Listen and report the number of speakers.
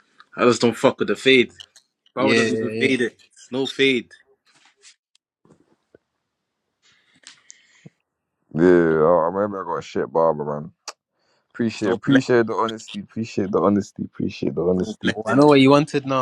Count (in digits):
3